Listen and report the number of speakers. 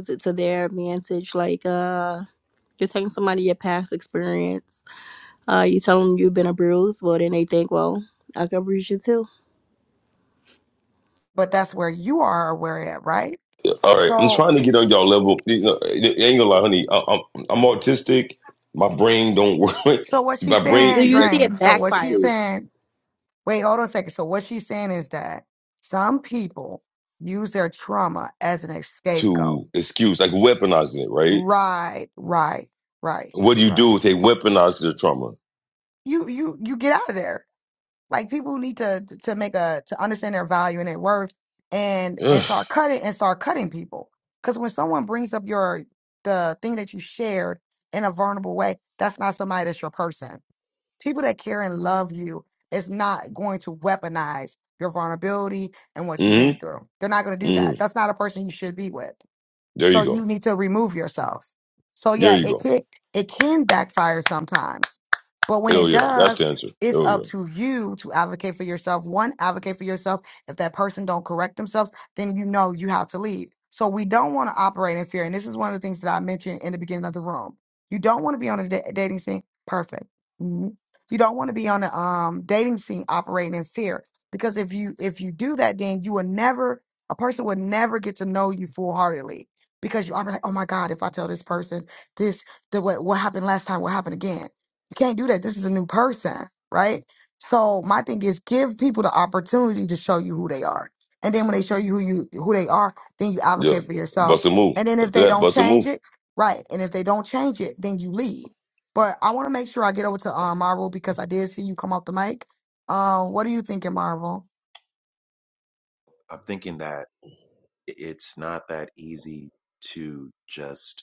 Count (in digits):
4